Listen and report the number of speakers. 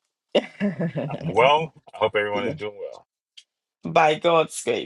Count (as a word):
two